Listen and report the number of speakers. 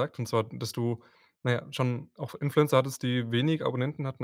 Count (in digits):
1